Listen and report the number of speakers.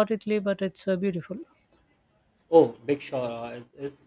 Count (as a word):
two